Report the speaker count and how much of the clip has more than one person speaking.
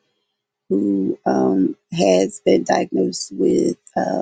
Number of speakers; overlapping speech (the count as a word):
one, no overlap